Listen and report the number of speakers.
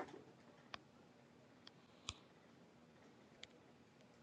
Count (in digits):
0